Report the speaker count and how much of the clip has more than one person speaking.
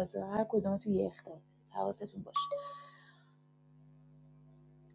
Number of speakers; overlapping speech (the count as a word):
one, no overlap